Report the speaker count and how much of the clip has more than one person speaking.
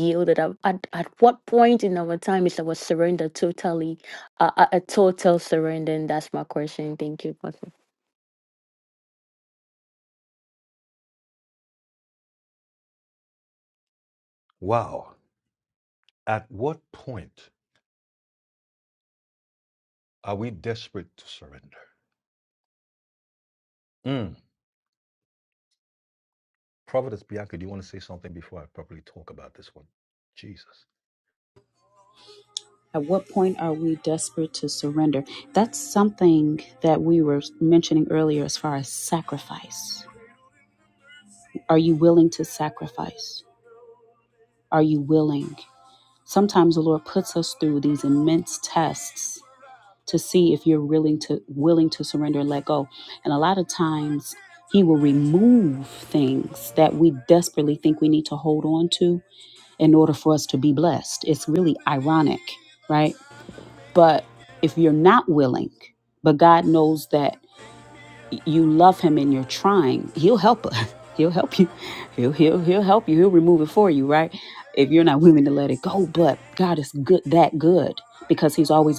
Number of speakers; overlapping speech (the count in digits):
3, no overlap